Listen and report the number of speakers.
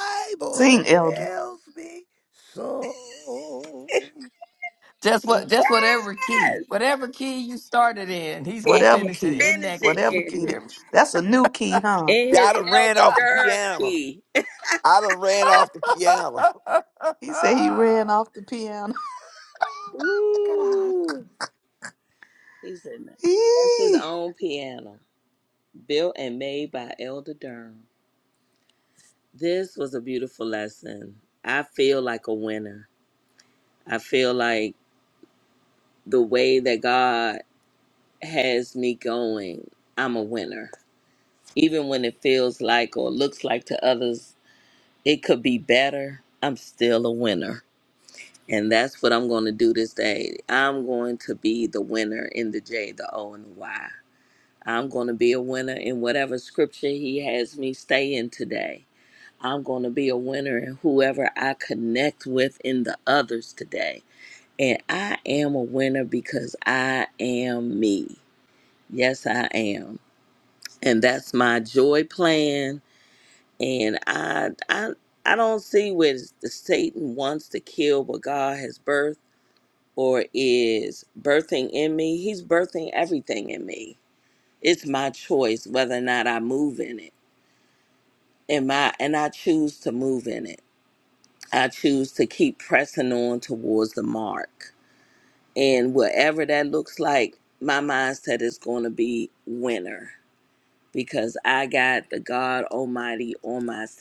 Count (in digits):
4